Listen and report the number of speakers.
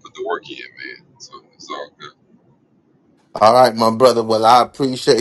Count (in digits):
2